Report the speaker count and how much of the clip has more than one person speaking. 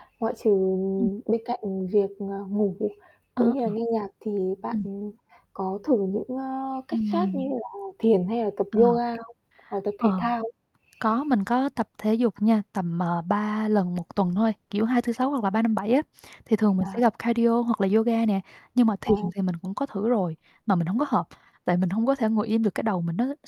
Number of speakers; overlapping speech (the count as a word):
two, about 8%